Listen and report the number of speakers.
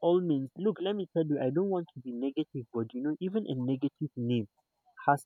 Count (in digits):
1